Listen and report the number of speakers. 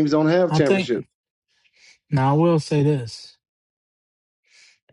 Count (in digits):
2